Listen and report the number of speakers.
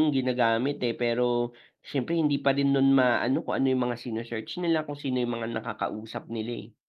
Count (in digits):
1